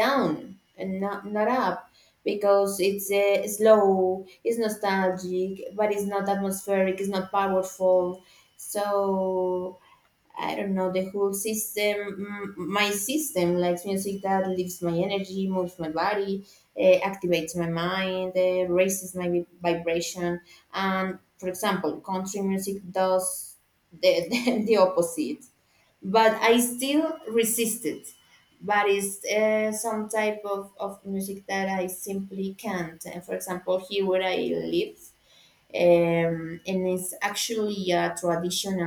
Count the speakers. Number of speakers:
one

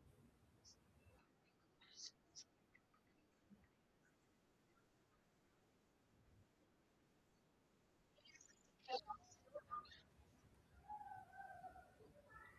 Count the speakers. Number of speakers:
zero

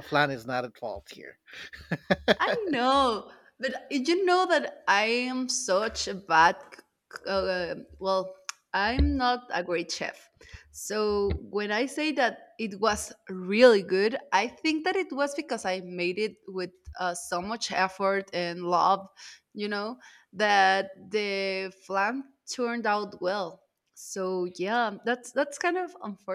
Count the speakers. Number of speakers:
two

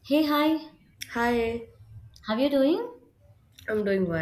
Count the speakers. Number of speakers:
two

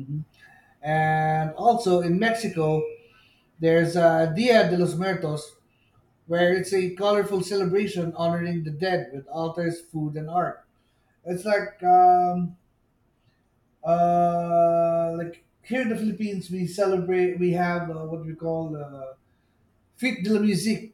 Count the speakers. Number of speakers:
one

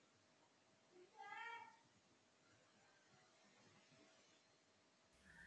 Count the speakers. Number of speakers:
zero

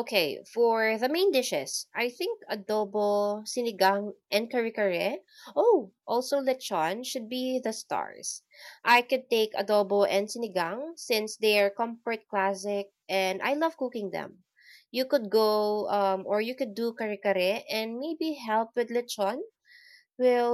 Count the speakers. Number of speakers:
one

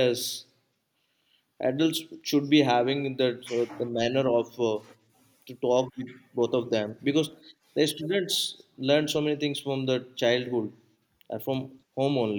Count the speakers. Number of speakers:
one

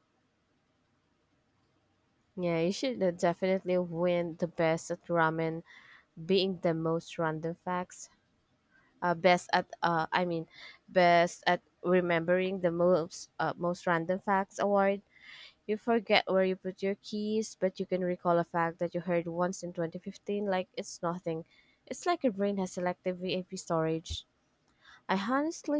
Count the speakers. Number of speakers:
one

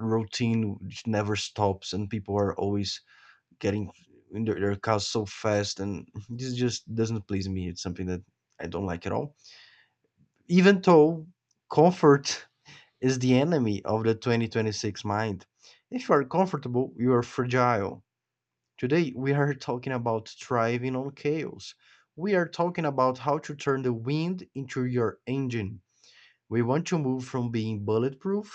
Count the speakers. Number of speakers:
one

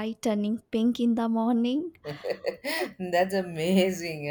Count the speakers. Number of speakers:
two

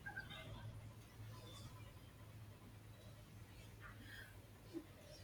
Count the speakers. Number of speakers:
zero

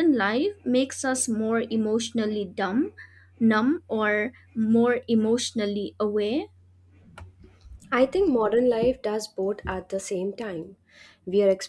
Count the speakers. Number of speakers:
two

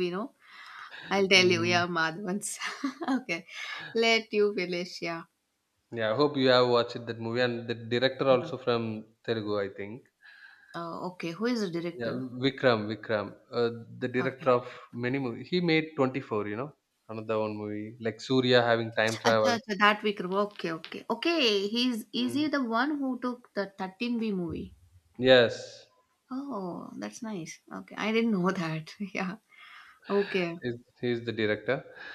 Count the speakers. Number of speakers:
two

